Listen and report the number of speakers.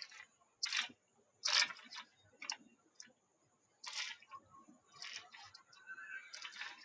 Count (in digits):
0